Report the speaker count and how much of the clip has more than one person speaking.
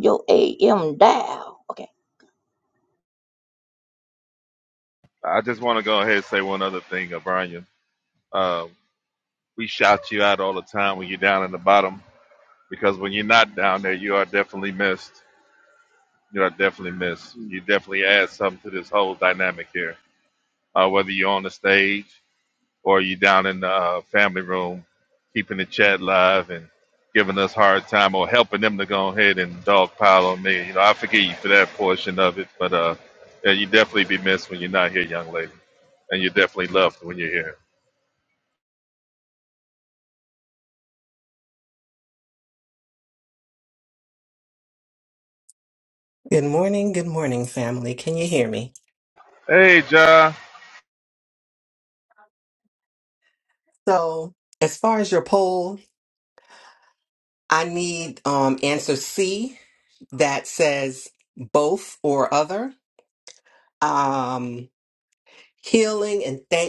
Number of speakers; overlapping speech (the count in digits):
3, no overlap